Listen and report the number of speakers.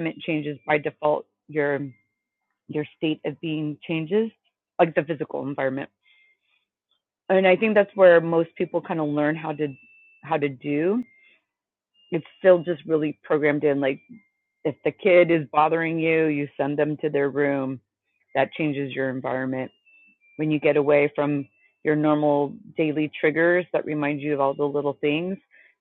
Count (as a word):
one